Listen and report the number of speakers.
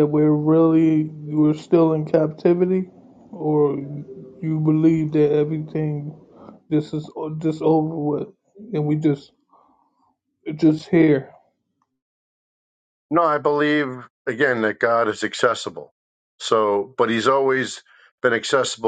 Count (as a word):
two